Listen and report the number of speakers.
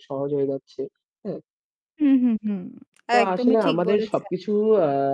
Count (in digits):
2